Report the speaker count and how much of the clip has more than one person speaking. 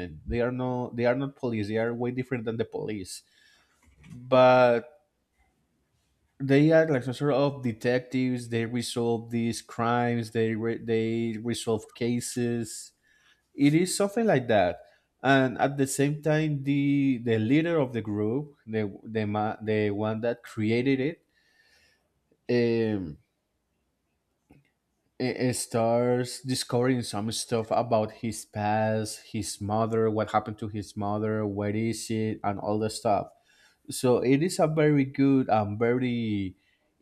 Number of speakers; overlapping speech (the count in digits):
1, no overlap